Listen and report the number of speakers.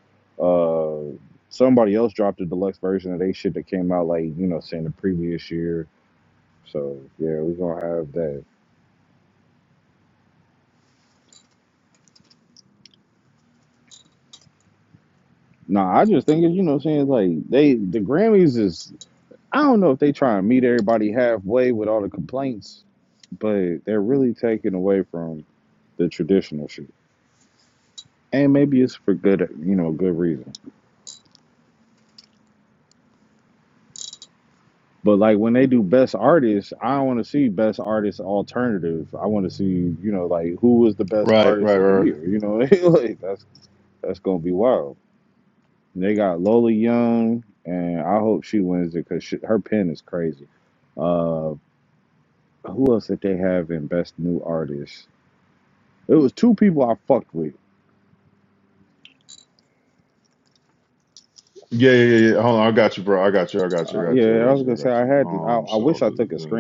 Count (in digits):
2